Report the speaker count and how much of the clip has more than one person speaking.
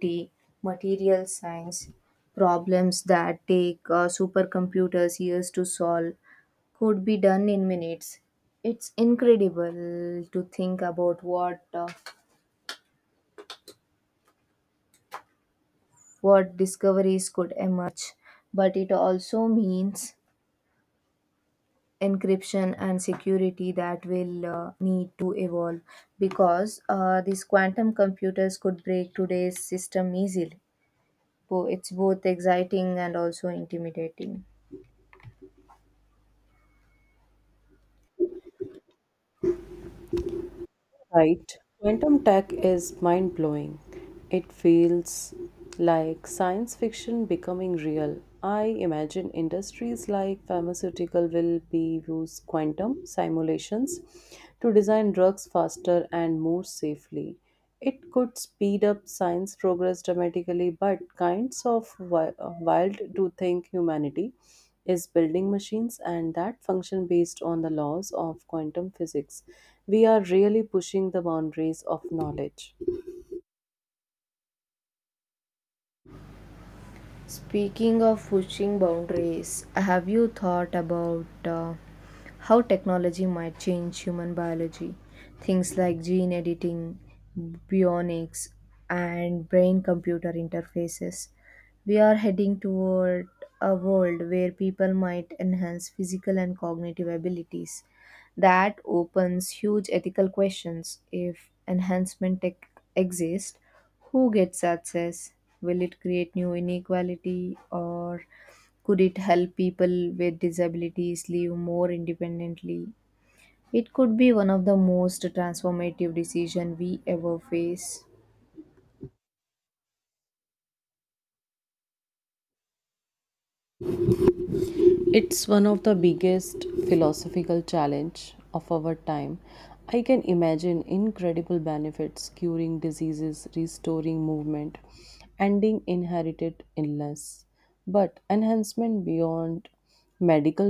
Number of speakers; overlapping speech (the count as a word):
two, no overlap